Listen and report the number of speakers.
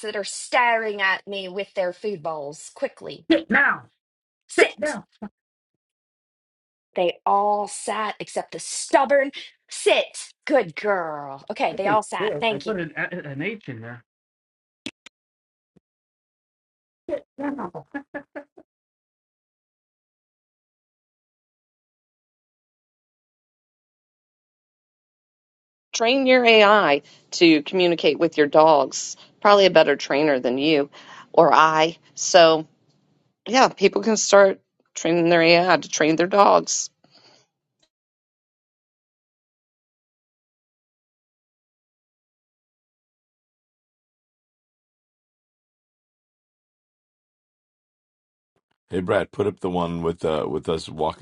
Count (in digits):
4